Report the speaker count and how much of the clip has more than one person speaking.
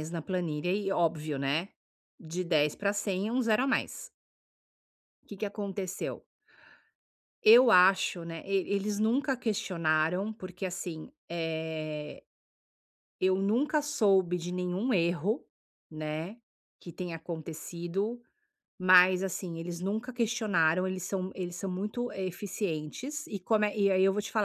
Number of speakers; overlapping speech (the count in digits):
1, no overlap